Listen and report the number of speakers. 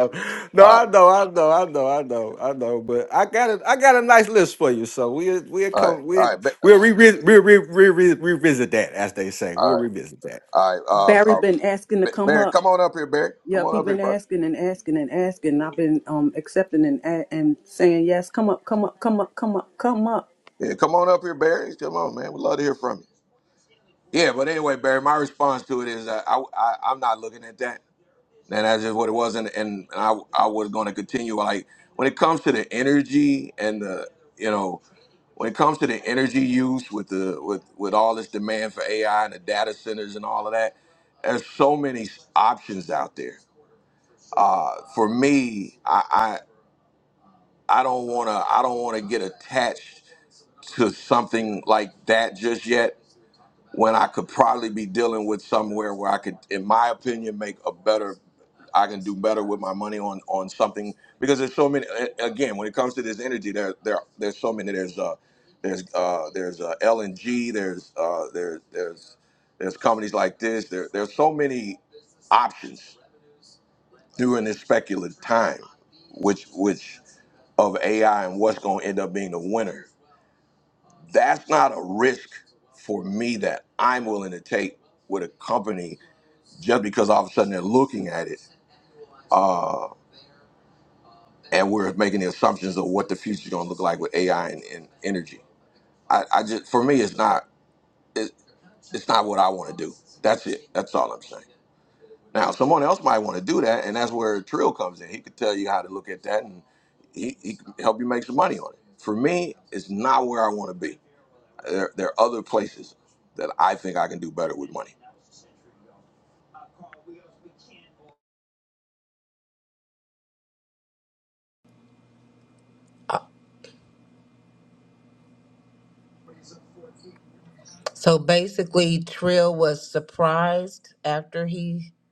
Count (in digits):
4